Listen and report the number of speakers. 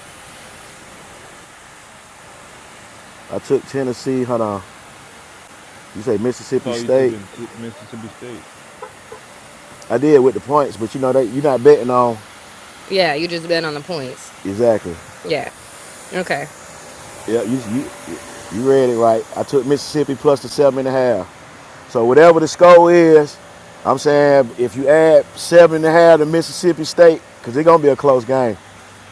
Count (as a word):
three